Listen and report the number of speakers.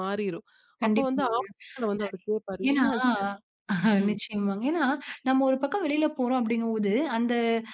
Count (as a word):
two